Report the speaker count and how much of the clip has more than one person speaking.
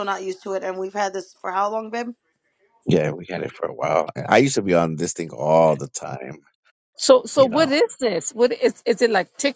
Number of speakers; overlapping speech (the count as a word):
three, about 4%